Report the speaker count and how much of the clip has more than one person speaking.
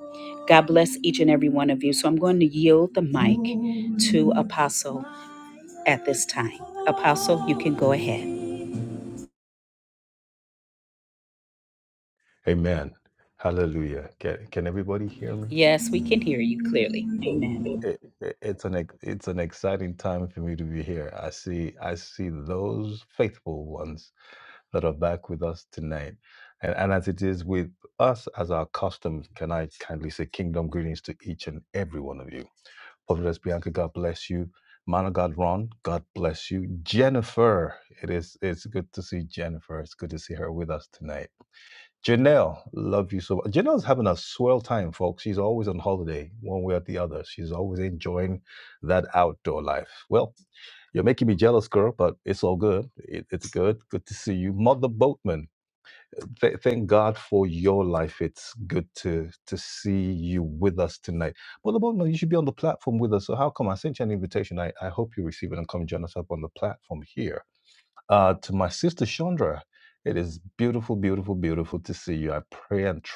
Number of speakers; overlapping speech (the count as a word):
two, under 1%